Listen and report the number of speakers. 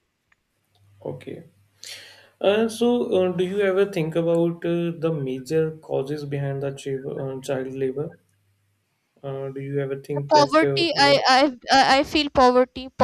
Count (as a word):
two